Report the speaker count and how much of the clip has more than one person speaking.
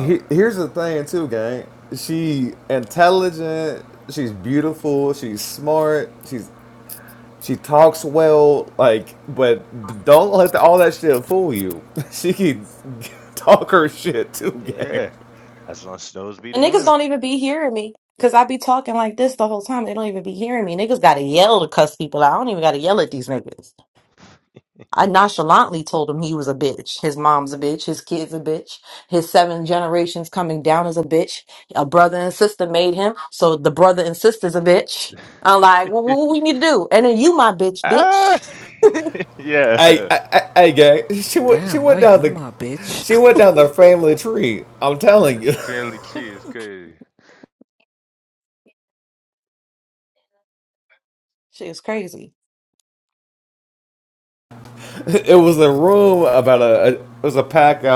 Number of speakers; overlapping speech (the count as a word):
four, about 6%